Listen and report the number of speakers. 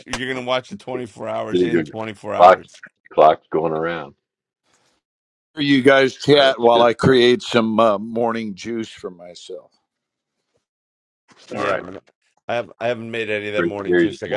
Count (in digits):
3